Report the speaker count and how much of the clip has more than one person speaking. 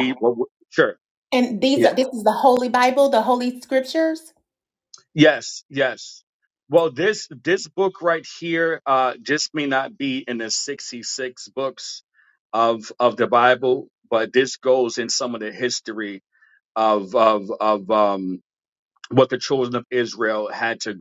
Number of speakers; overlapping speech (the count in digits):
2, about 1%